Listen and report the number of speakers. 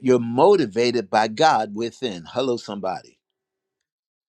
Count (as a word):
one